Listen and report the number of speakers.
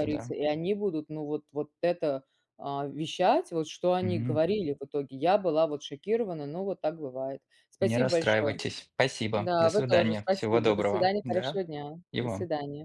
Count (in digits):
2